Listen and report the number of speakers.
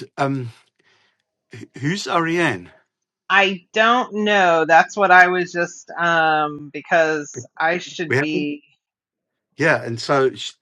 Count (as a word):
two